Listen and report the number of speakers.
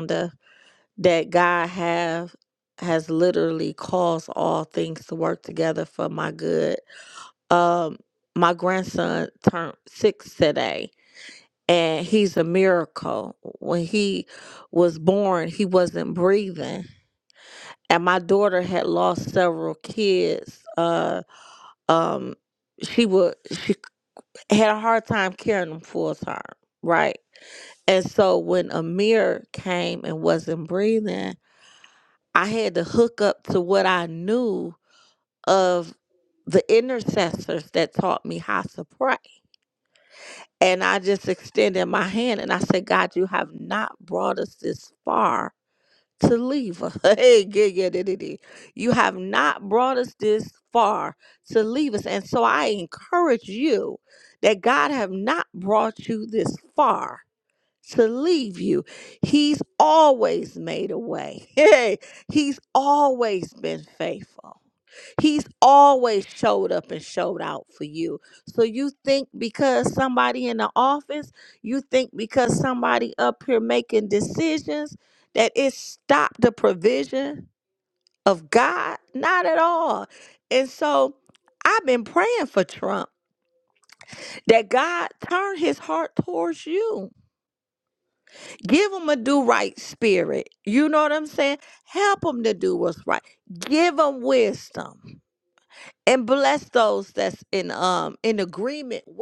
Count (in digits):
1